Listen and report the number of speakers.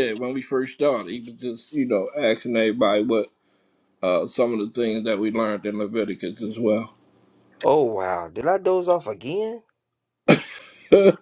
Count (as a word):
two